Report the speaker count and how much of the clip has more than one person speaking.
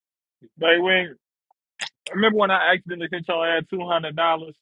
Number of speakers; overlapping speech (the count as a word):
one, no overlap